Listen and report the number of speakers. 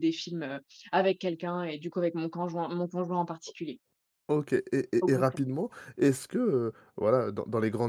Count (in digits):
2